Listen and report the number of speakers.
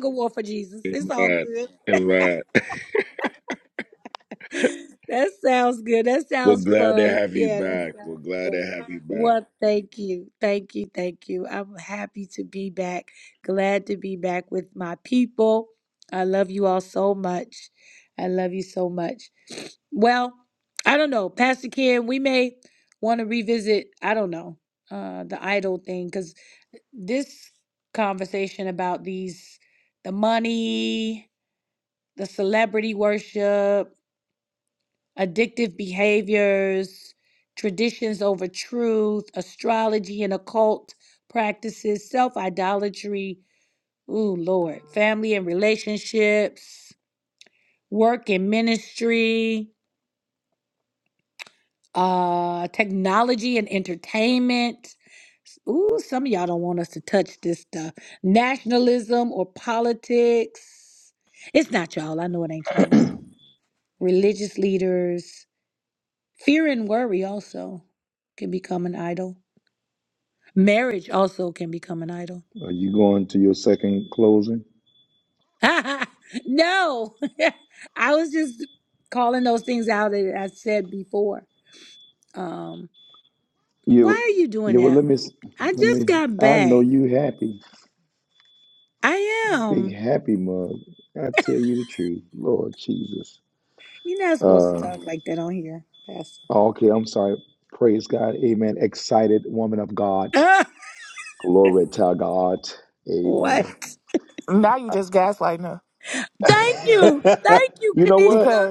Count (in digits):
4